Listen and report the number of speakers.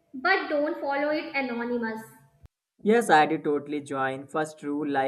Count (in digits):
2